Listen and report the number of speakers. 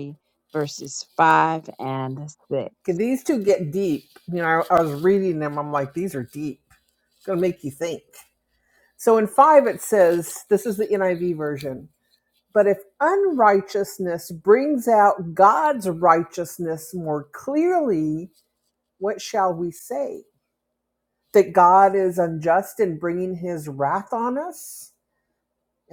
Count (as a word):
two